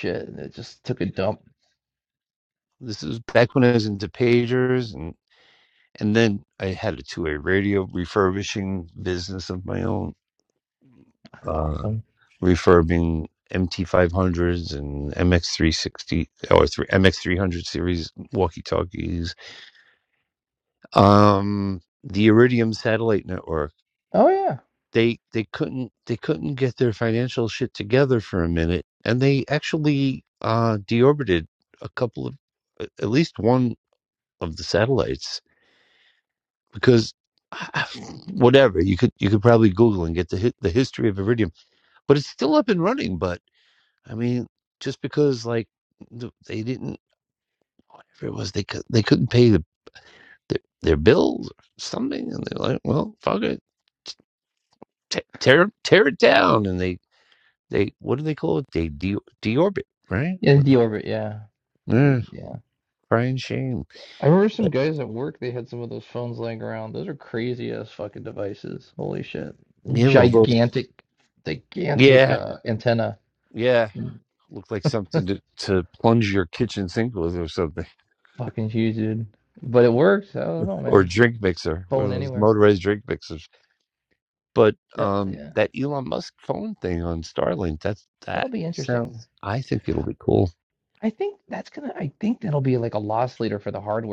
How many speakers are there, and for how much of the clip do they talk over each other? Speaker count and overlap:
two, about 4%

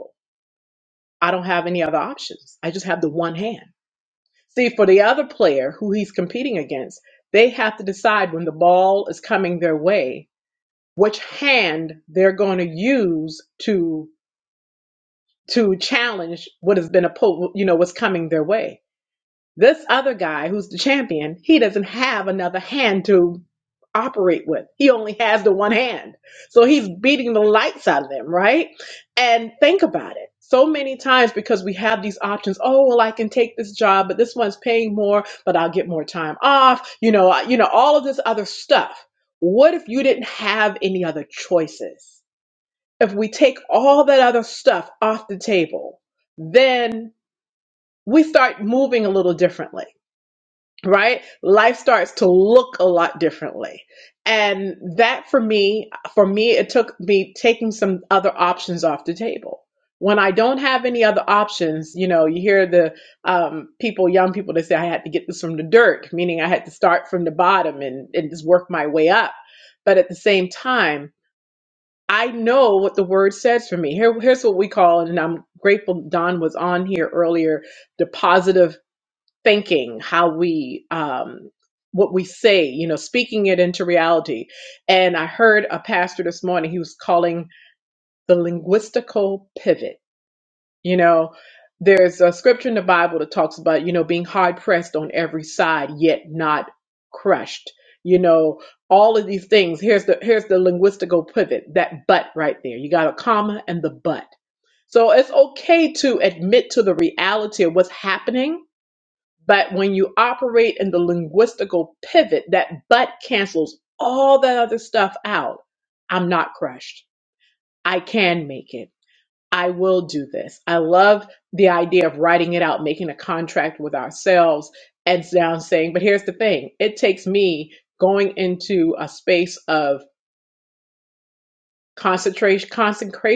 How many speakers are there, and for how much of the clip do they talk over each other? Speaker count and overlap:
one, no overlap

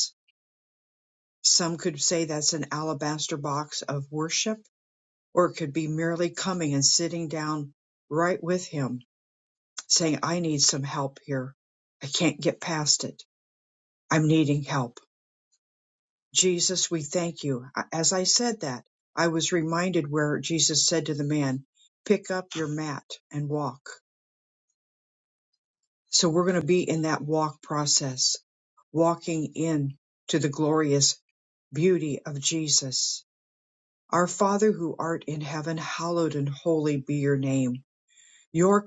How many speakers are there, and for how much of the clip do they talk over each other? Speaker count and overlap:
one, no overlap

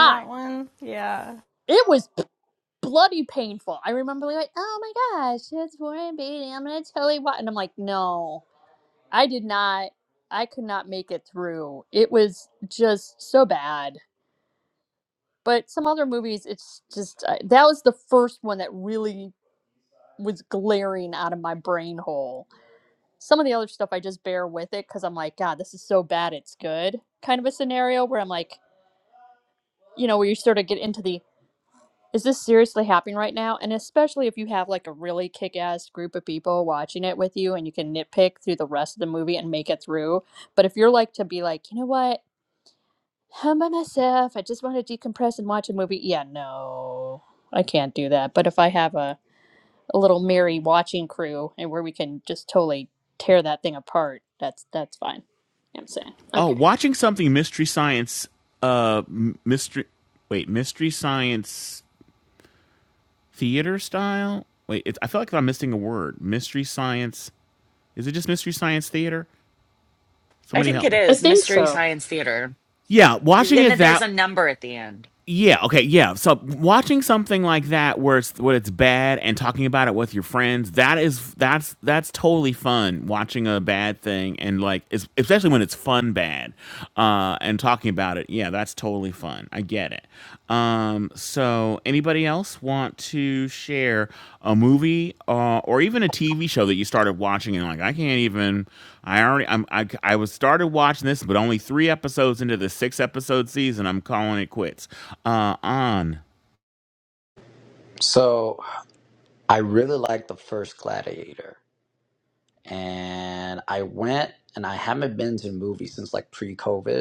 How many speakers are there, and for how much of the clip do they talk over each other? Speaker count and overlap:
five, about 2%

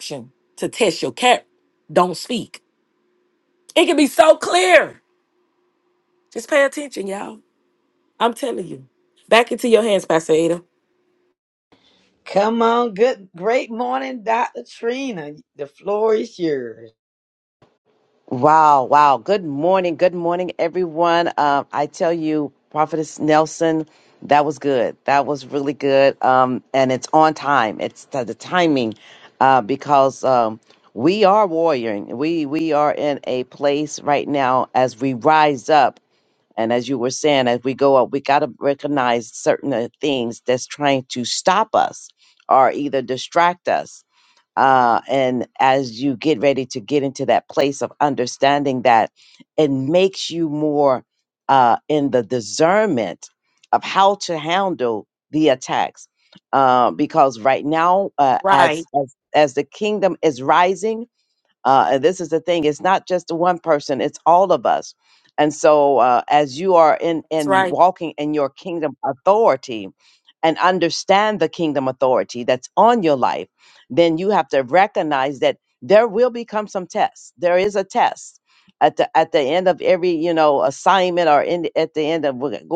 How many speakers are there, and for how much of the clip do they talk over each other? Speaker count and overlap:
three, about 1%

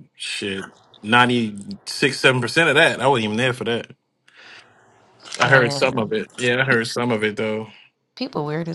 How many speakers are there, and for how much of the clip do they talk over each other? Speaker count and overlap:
two, about 8%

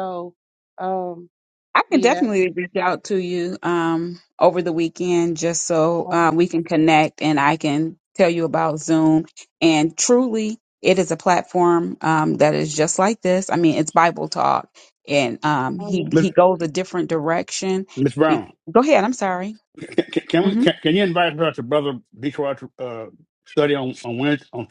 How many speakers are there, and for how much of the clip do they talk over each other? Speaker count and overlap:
three, about 4%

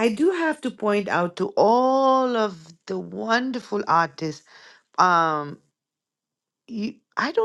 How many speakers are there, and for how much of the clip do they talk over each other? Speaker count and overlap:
one, no overlap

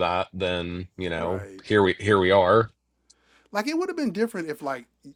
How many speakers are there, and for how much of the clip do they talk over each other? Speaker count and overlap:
two, about 8%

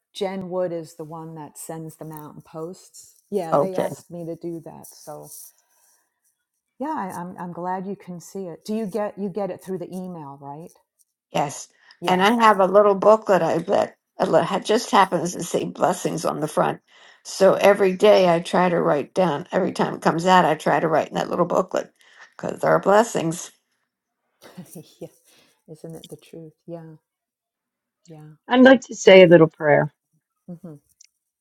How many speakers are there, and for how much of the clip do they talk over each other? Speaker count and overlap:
three, about 4%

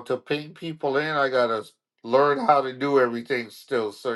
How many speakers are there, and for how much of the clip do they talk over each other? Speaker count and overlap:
one, no overlap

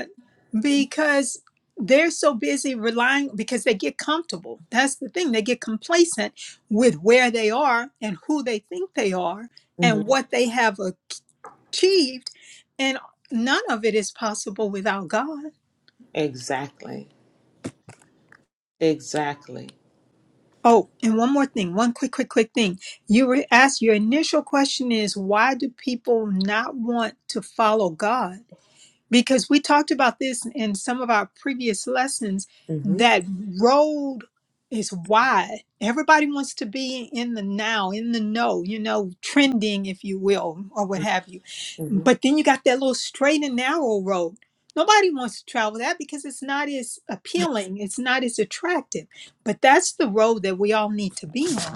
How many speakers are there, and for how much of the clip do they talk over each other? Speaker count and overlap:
two, about 1%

